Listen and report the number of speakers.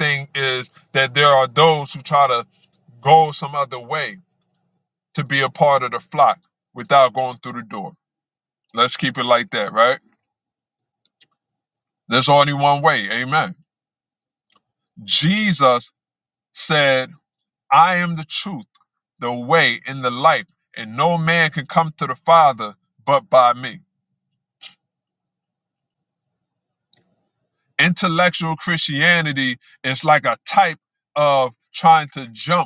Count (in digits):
1